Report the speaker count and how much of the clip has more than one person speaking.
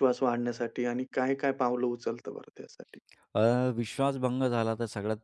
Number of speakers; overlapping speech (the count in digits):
2, no overlap